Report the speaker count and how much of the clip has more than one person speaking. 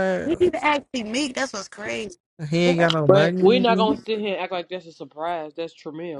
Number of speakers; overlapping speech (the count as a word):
three, about 20%